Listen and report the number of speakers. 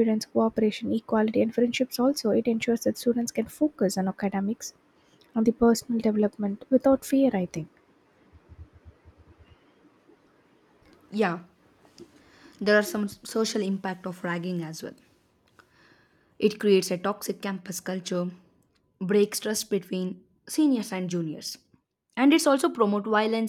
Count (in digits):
2